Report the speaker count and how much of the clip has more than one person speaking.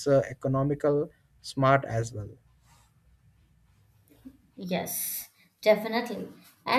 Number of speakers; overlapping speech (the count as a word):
two, no overlap